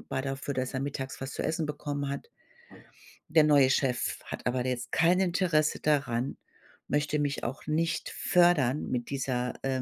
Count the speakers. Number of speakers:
1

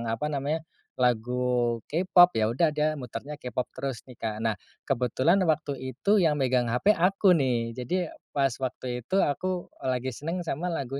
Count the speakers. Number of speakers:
1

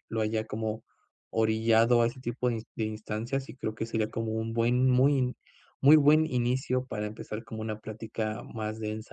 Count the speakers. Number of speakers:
1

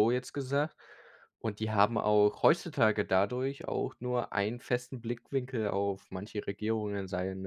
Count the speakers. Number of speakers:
1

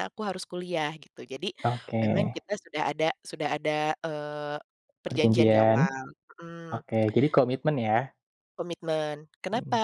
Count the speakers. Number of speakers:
2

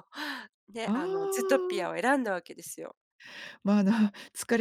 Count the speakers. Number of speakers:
2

